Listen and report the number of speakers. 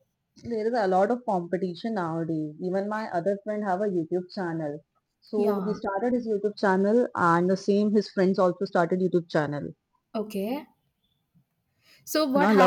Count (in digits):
2